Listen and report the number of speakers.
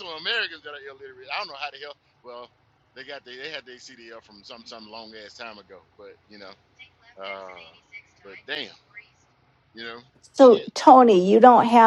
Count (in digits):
2